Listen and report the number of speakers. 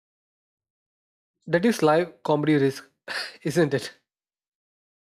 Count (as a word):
one